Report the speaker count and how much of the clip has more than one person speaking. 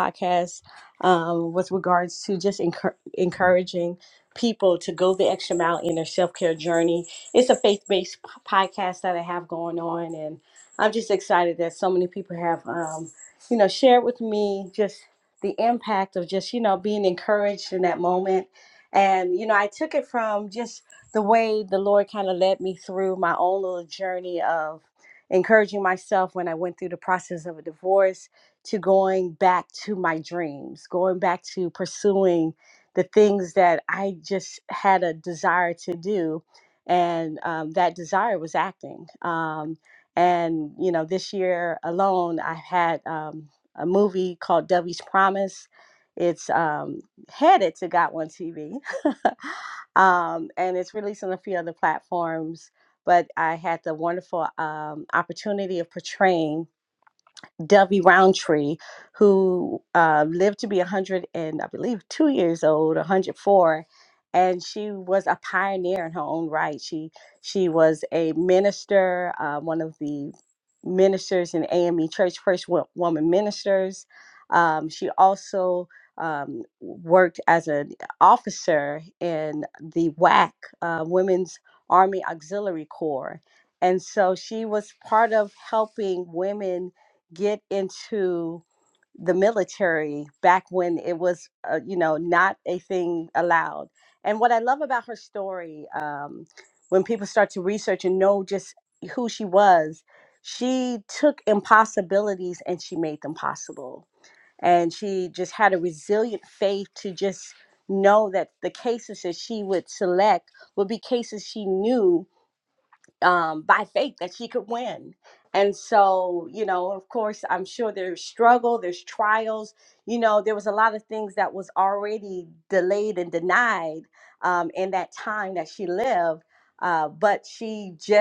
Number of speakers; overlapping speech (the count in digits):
1, no overlap